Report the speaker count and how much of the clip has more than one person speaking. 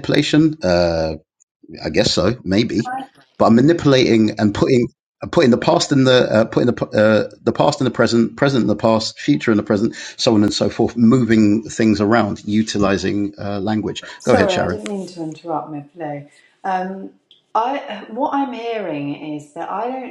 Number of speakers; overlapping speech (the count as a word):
two, about 2%